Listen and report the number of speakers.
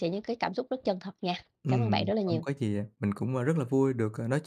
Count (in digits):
2